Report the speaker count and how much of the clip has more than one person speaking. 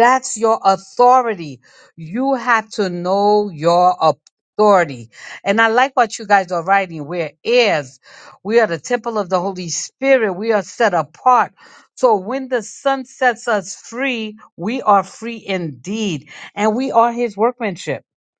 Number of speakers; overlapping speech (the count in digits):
1, no overlap